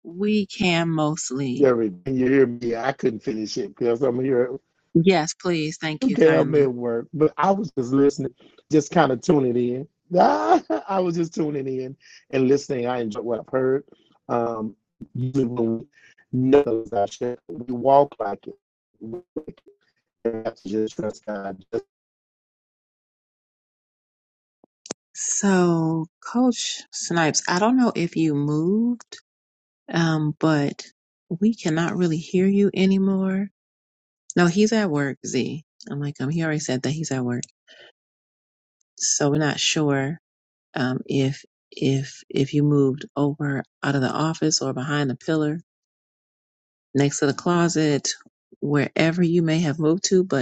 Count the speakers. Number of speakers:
2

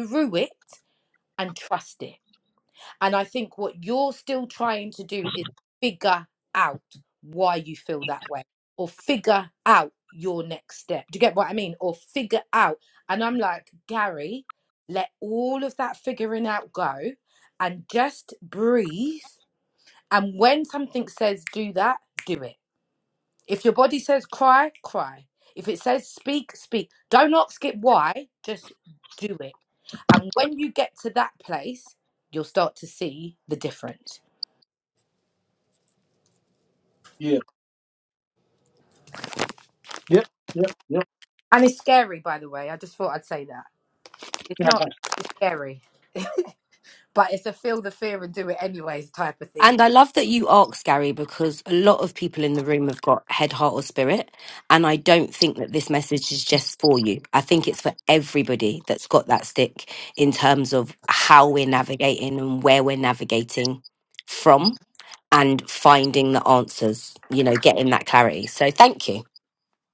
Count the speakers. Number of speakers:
3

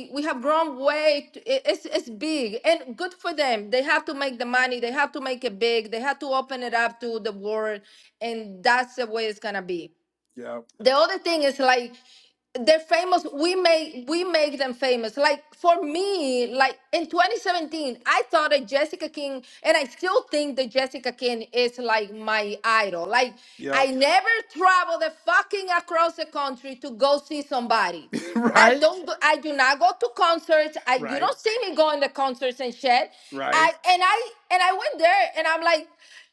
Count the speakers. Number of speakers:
2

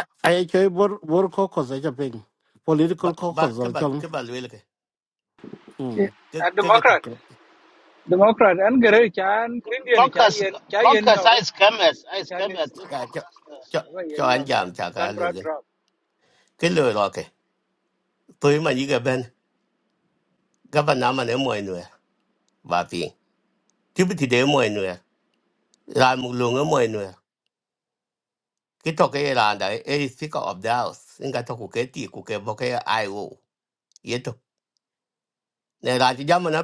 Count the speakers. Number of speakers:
4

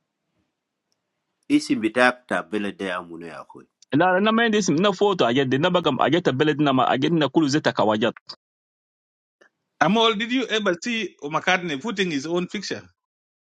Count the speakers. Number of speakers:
3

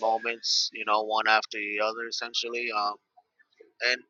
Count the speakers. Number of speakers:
1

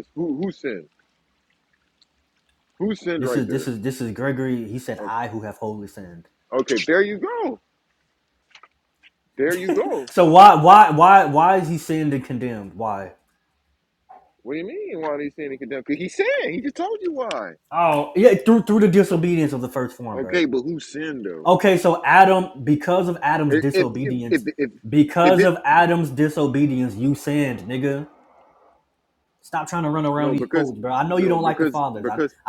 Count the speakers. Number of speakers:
2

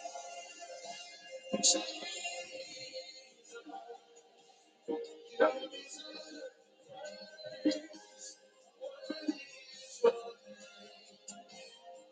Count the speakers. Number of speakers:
0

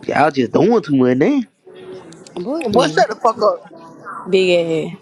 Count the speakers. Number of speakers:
3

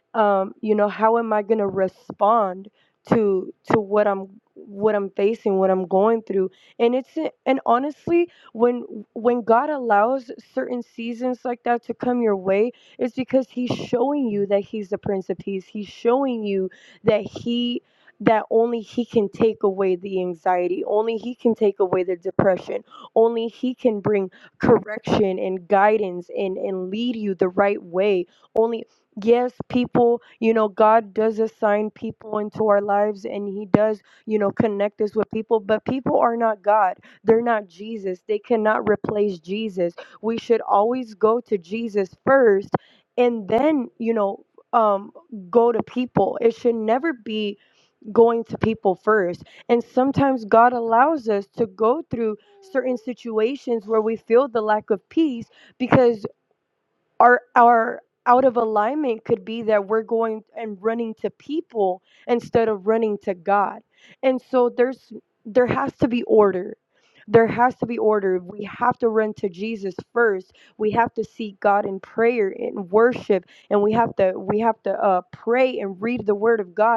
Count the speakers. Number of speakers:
1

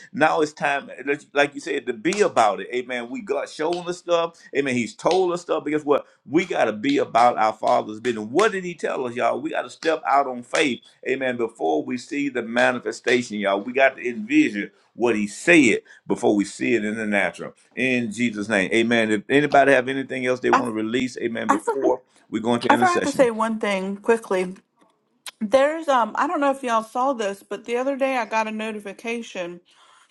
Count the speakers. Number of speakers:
2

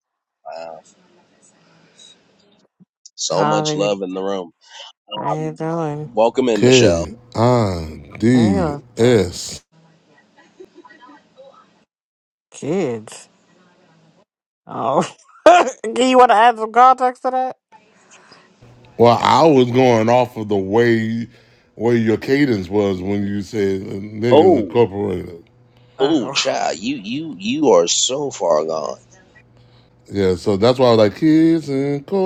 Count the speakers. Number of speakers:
3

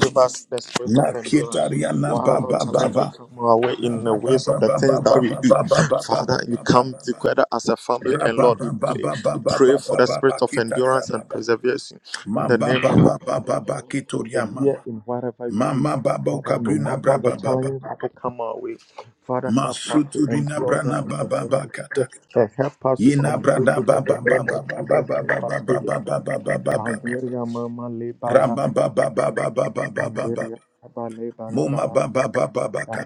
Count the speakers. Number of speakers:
2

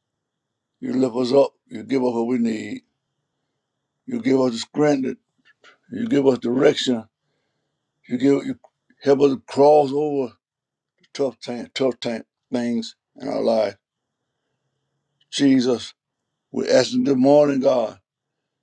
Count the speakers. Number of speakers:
1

